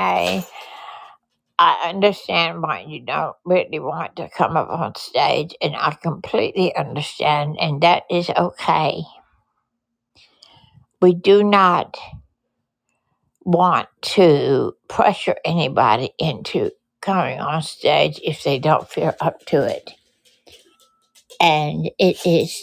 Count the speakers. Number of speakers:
1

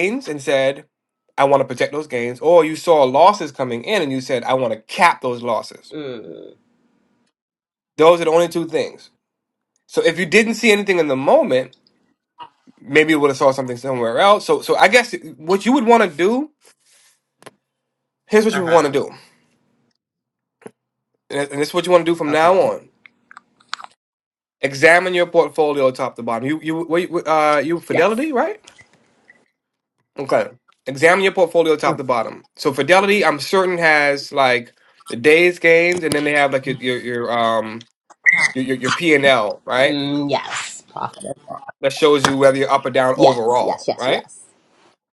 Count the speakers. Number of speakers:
2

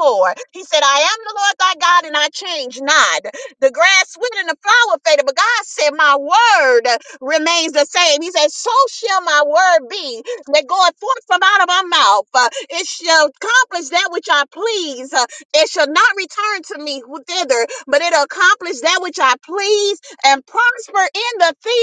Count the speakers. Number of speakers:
1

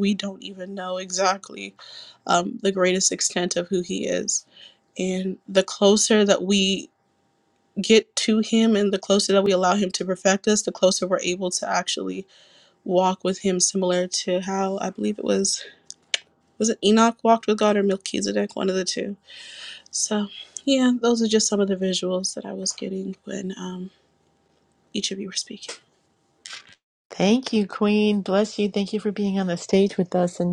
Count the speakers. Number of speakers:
2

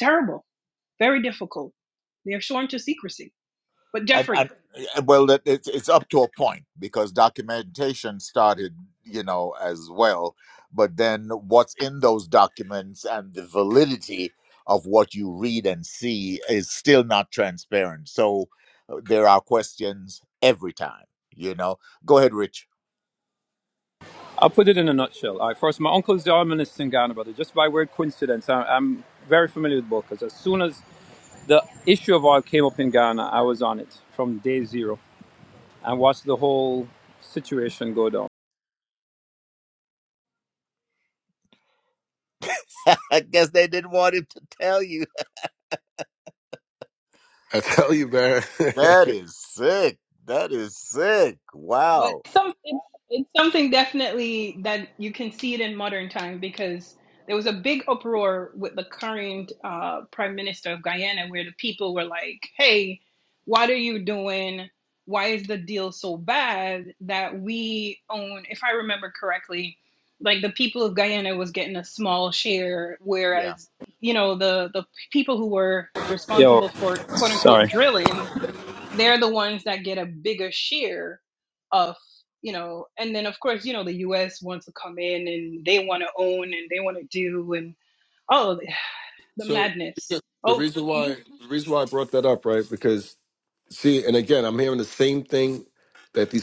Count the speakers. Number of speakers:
4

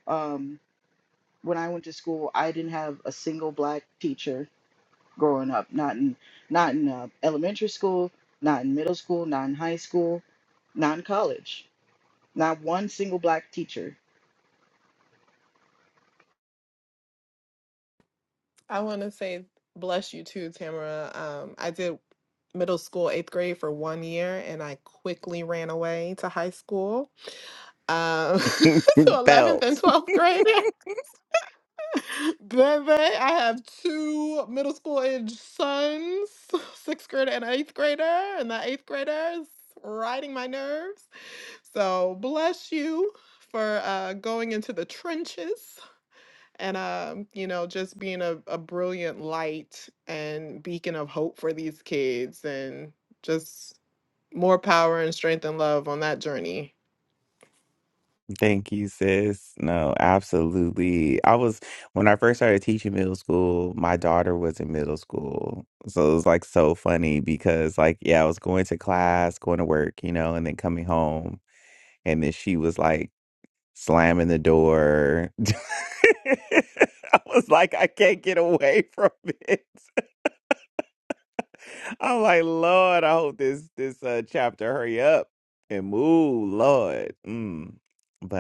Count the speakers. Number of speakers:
3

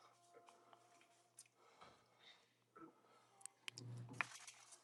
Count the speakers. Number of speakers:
0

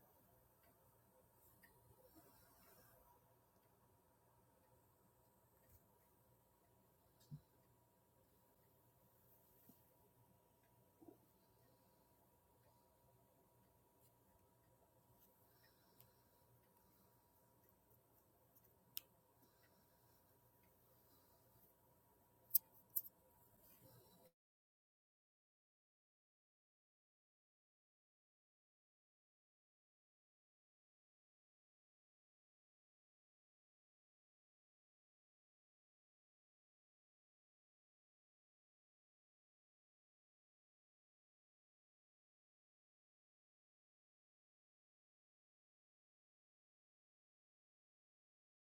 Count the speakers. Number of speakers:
0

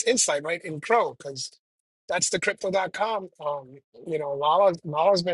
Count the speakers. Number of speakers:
1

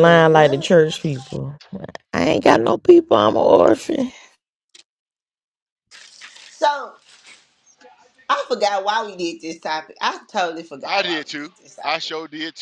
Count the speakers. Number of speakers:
3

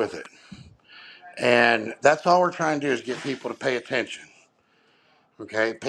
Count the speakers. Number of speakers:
1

